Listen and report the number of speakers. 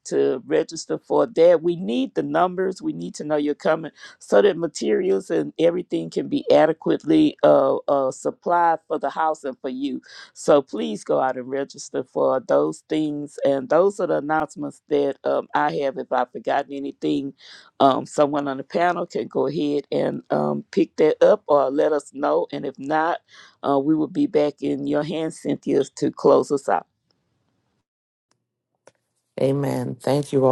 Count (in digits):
2